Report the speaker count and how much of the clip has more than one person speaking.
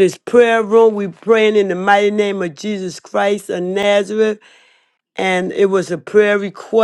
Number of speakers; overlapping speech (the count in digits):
1, no overlap